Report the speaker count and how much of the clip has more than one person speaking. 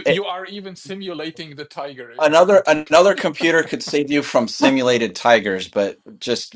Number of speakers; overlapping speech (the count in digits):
2, about 16%